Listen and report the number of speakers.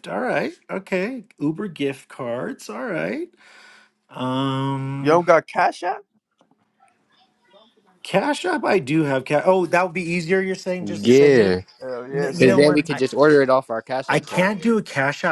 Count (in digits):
3